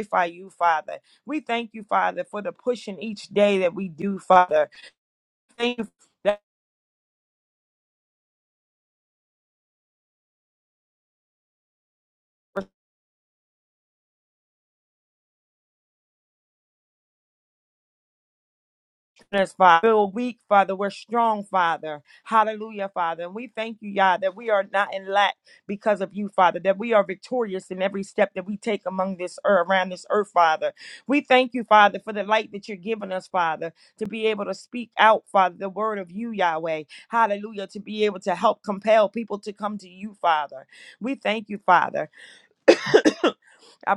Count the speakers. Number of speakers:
1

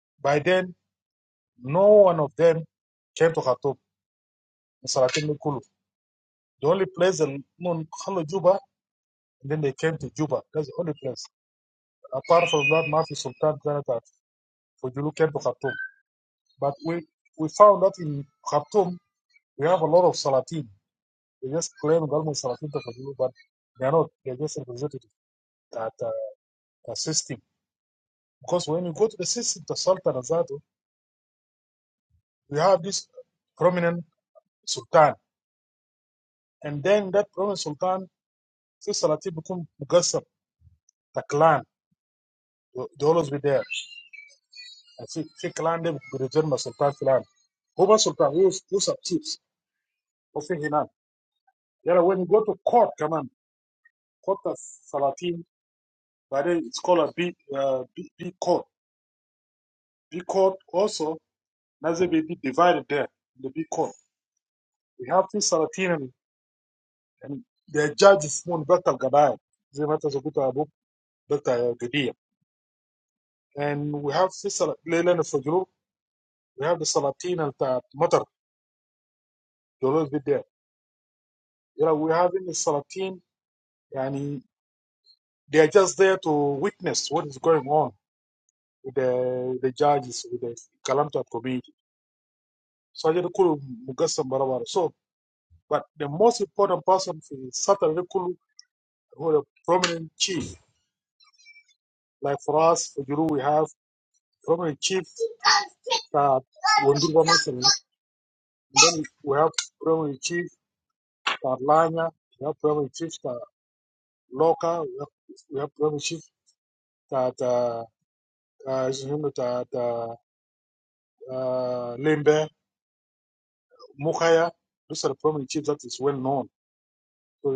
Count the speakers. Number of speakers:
1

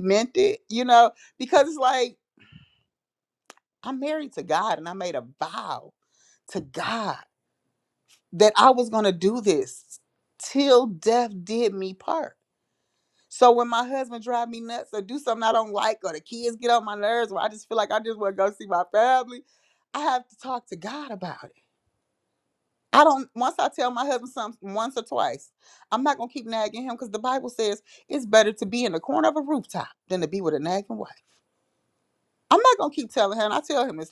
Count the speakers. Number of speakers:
1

